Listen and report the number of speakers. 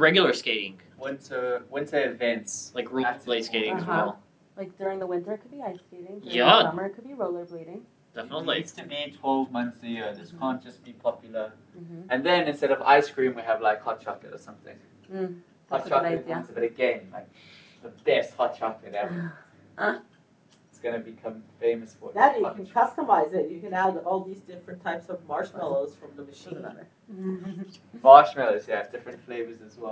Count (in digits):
4